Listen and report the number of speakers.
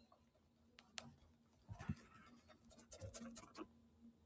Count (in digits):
0